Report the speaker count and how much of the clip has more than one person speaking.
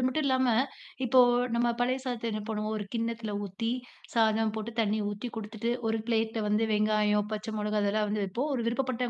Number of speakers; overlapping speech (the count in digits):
1, no overlap